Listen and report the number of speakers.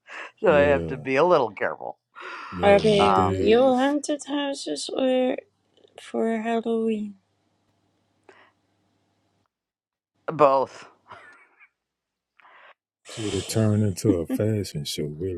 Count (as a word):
three